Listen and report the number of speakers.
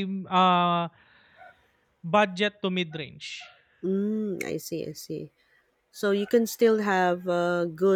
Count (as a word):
two